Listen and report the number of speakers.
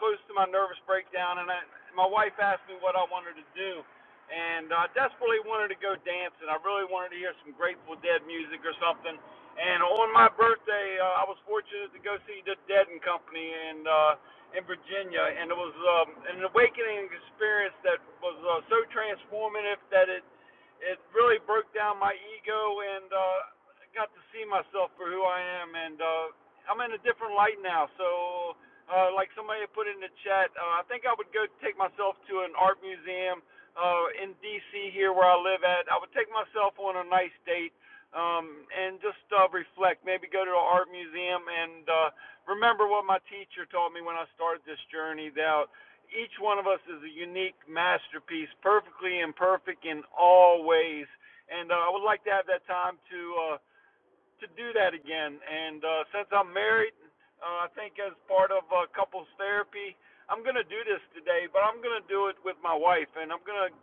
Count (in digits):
1